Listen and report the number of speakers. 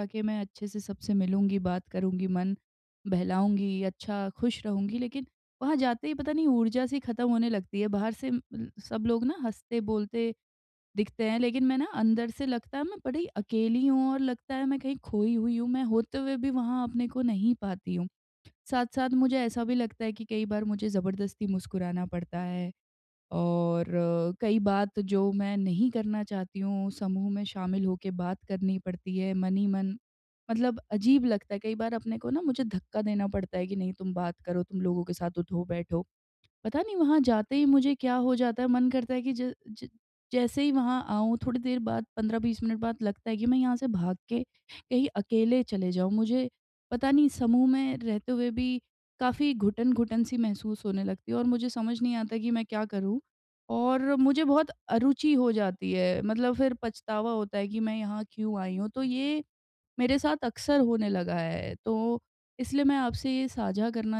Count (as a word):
one